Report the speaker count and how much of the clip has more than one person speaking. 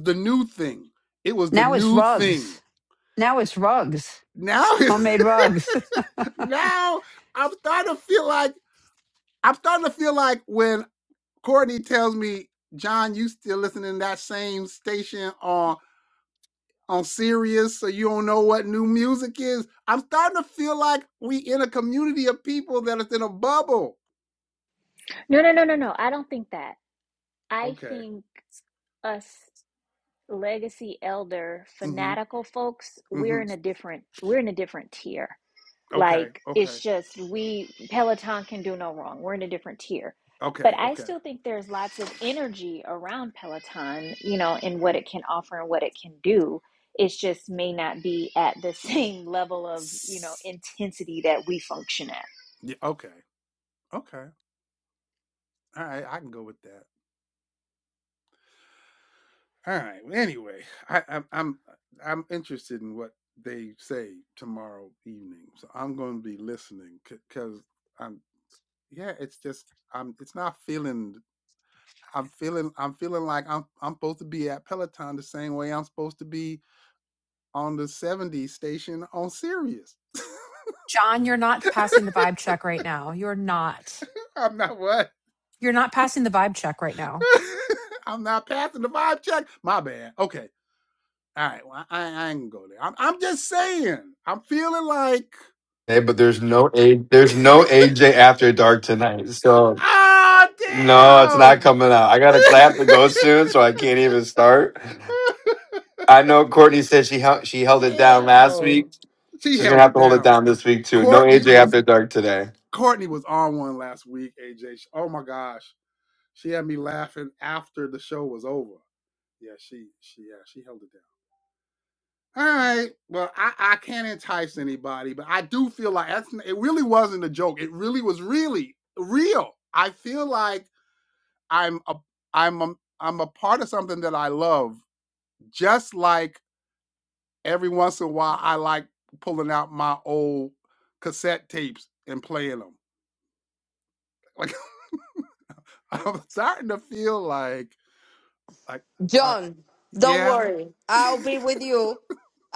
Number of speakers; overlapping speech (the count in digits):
6, about 5%